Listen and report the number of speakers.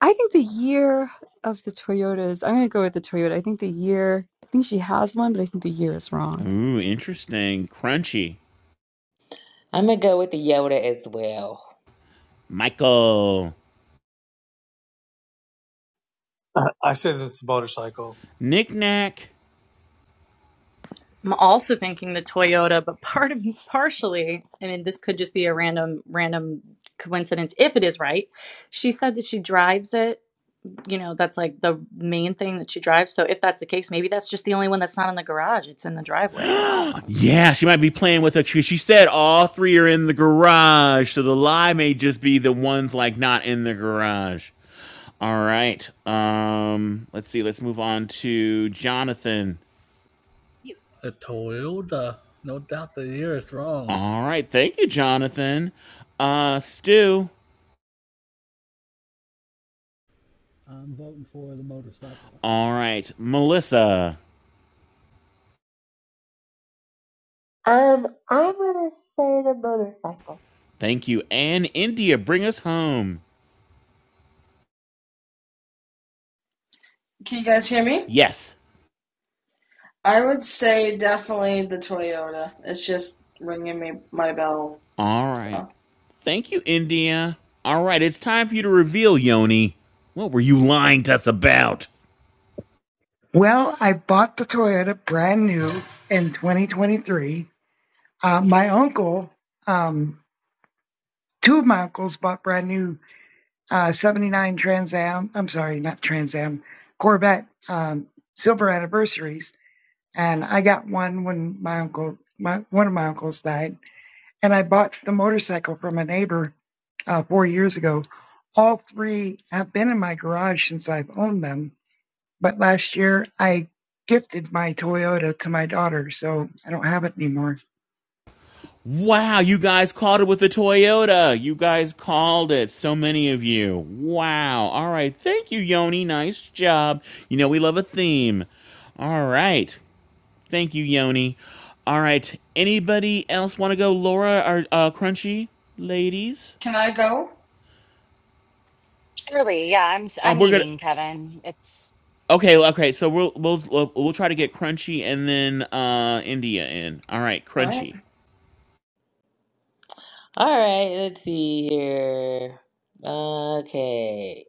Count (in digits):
11